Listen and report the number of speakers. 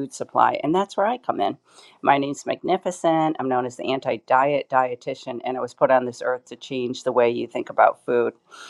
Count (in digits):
1